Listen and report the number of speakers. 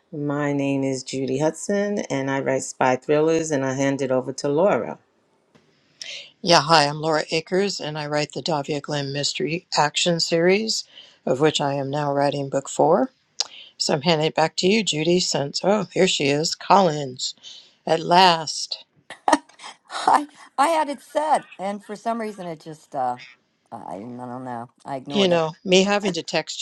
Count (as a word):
three